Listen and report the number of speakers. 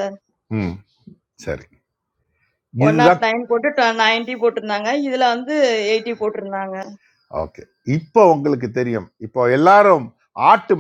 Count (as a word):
two